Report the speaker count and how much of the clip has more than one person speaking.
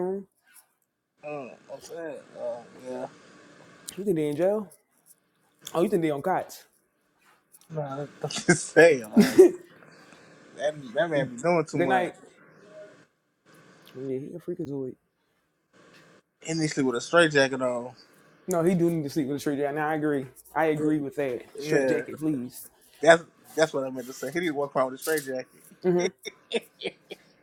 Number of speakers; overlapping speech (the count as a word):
two, about 3%